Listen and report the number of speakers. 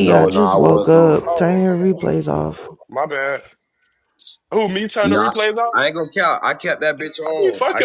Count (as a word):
three